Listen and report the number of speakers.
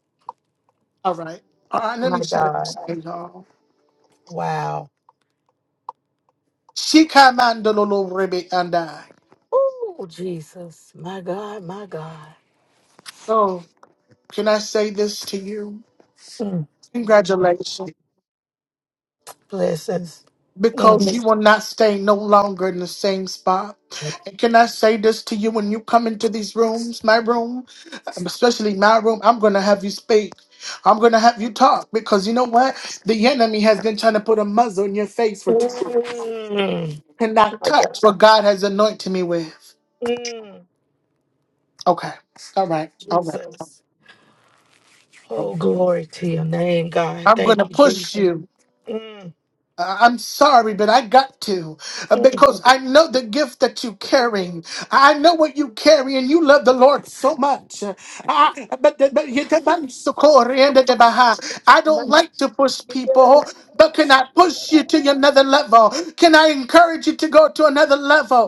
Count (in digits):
2